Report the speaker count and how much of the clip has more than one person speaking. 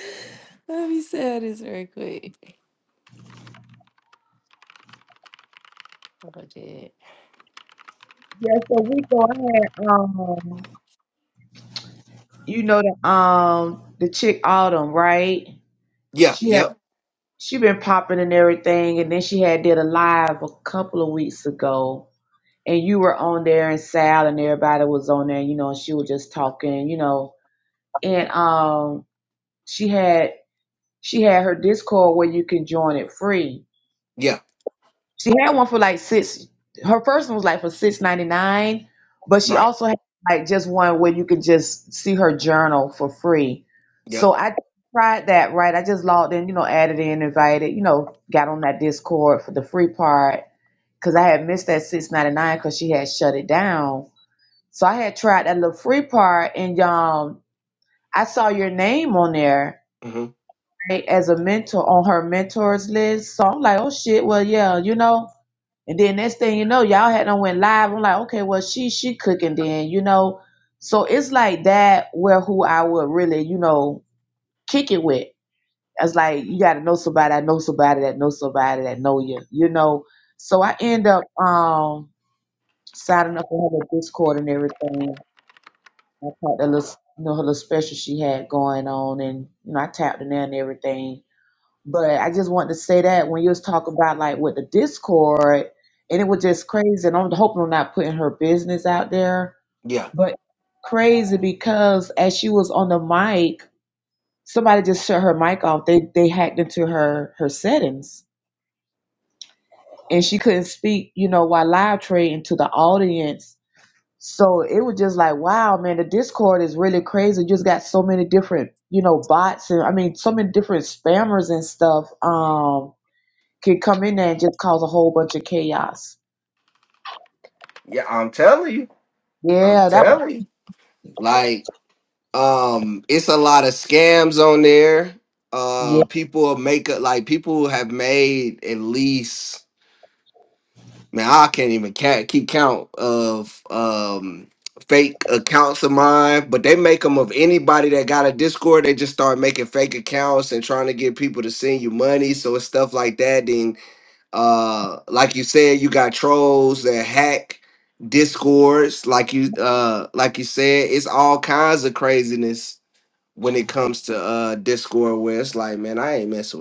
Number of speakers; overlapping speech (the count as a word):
three, about 1%